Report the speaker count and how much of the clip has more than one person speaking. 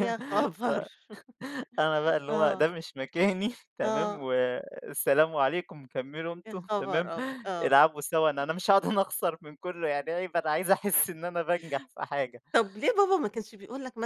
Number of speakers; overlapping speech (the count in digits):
2, about 14%